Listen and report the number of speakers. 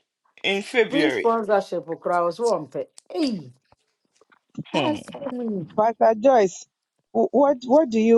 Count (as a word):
three